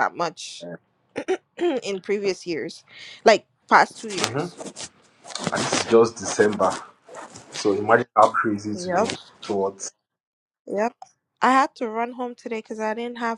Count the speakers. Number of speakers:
2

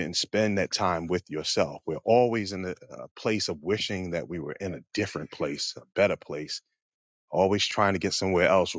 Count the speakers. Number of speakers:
1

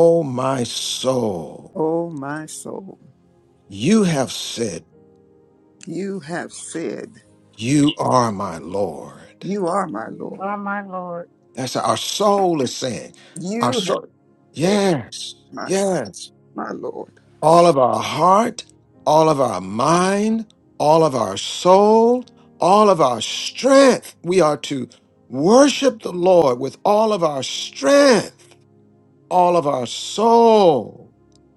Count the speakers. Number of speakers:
3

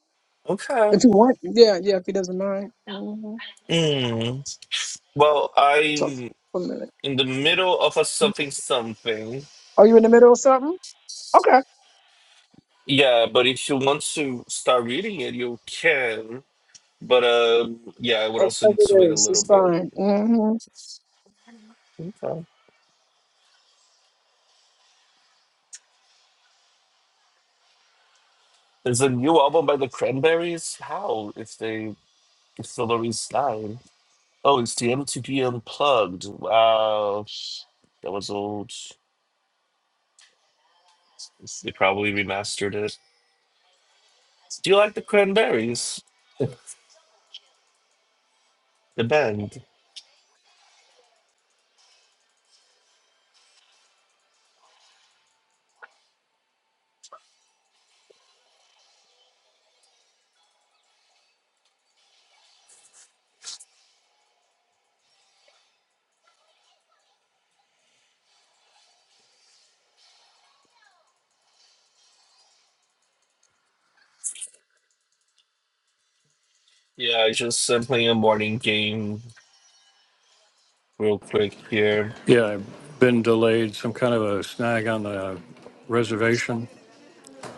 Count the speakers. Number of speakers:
3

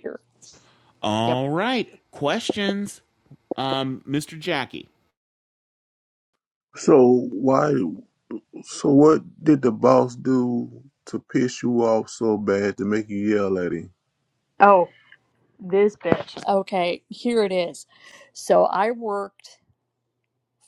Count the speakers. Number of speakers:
3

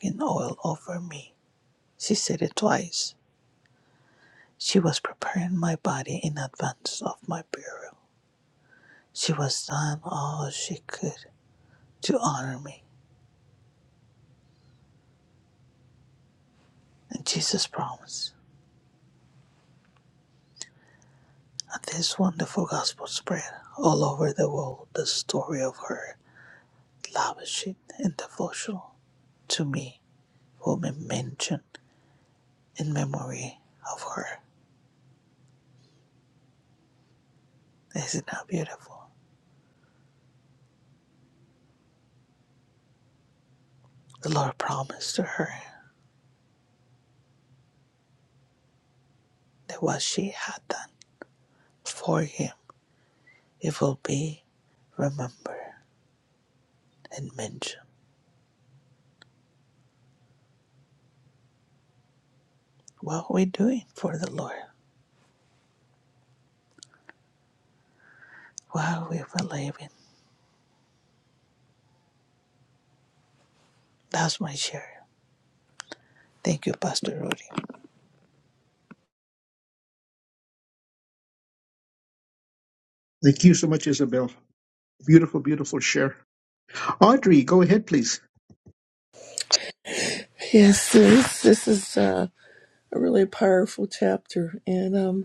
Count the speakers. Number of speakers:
3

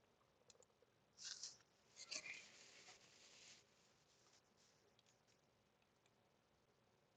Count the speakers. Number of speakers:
0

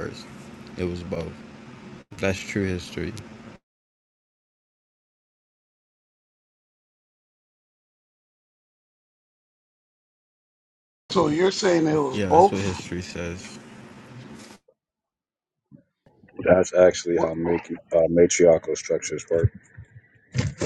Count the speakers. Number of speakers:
3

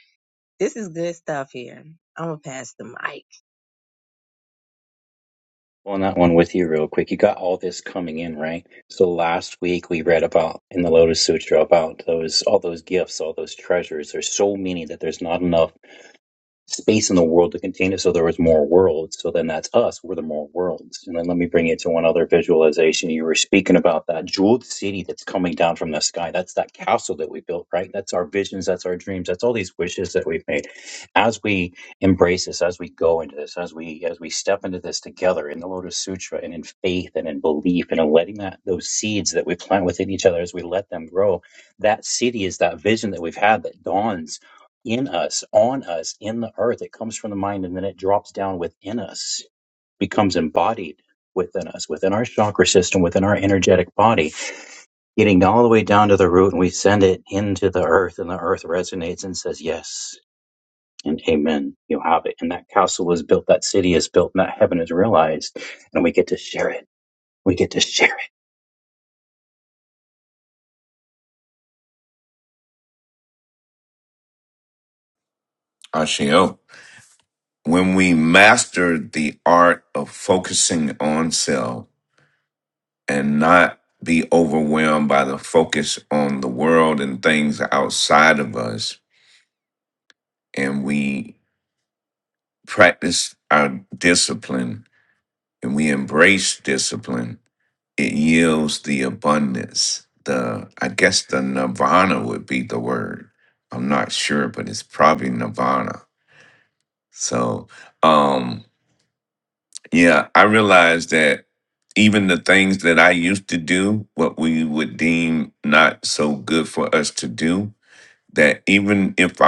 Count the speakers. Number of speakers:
3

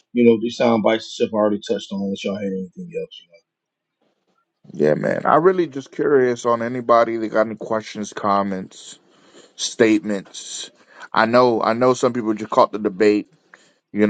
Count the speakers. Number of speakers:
2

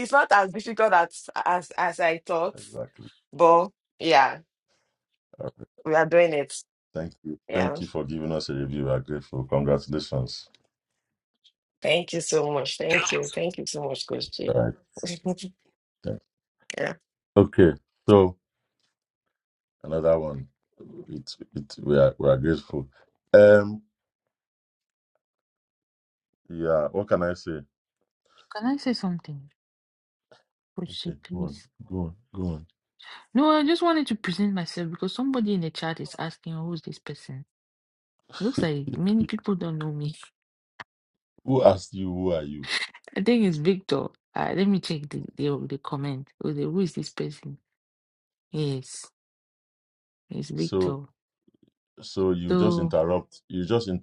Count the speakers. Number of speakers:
3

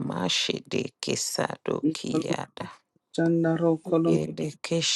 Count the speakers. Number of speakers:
2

